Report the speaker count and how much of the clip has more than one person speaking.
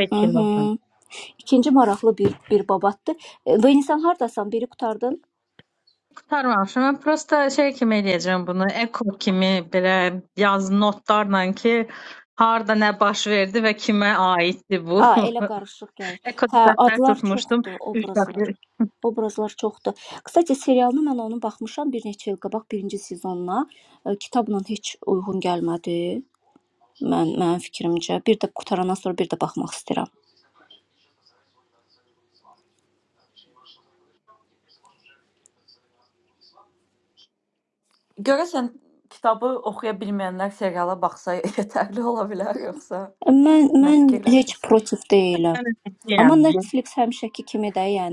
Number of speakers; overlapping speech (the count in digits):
3, about 8%